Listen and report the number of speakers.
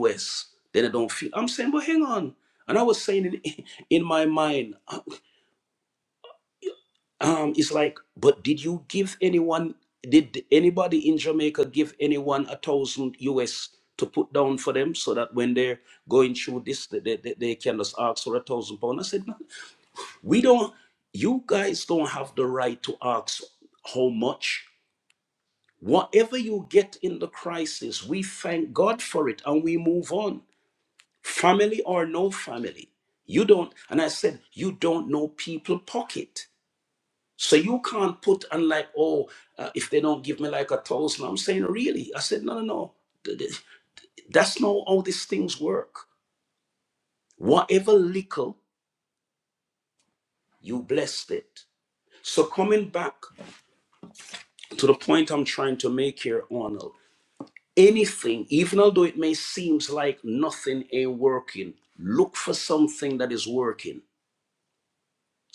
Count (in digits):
1